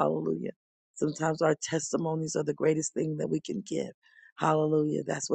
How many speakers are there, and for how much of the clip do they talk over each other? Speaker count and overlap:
one, no overlap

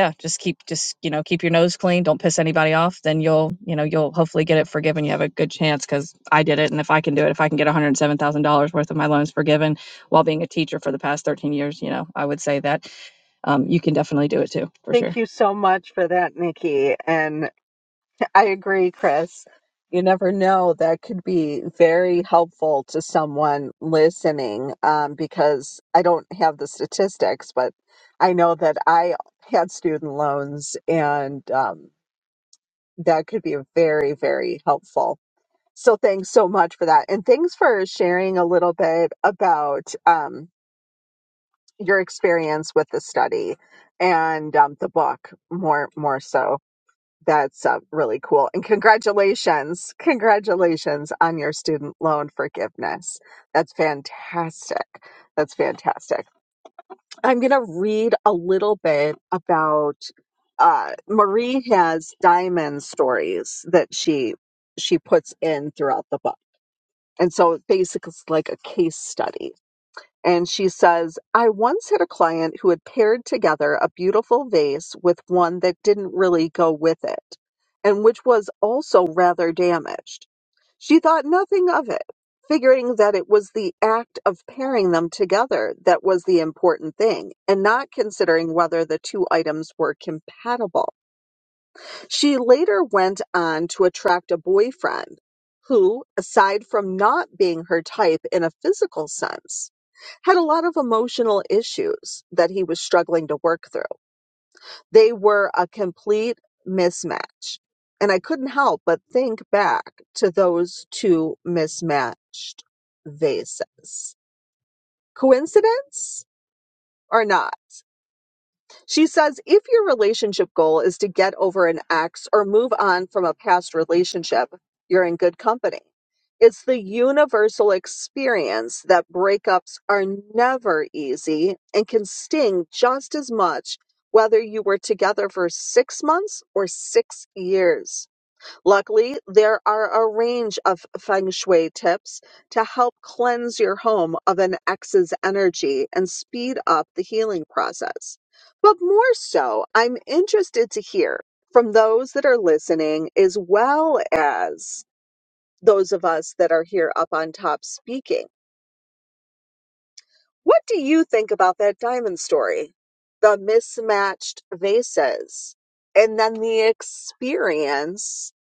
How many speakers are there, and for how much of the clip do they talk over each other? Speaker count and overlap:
two, under 1%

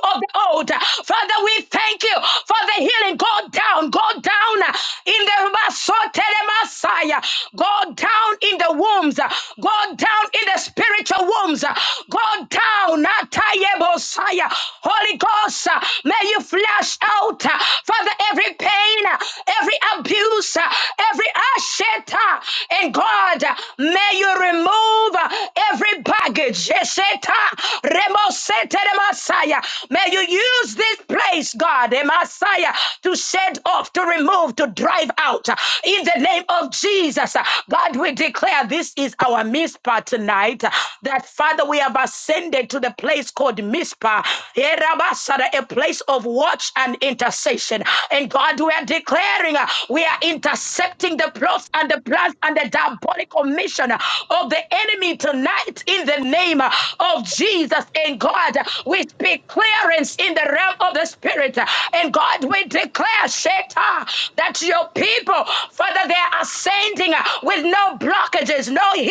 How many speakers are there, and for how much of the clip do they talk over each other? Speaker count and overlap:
one, no overlap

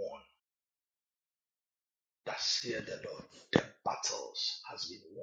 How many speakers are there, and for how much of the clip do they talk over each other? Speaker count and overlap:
one, no overlap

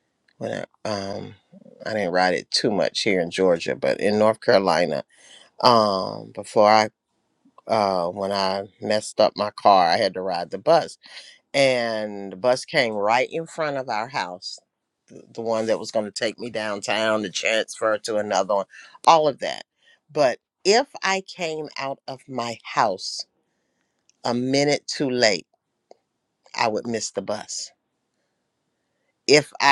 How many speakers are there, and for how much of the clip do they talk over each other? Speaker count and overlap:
one, no overlap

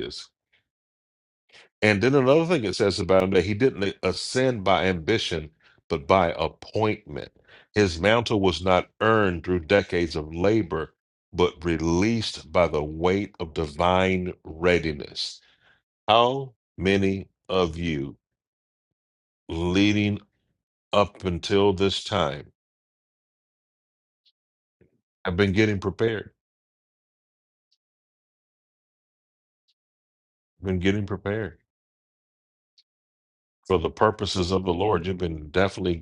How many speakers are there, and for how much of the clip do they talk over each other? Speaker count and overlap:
one, no overlap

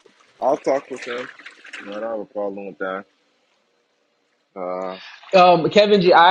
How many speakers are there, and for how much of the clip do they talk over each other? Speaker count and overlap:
two, no overlap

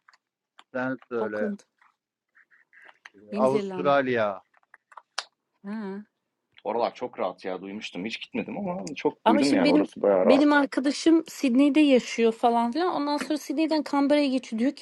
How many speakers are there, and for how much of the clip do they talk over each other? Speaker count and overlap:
three, about 12%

